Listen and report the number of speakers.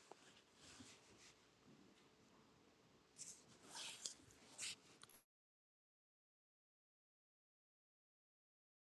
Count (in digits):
0